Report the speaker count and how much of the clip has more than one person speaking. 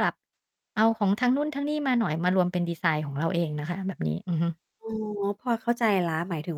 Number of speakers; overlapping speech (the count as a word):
two, no overlap